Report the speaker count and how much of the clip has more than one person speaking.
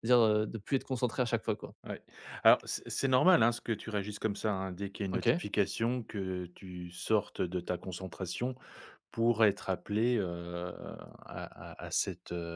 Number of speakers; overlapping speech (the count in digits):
2, about 2%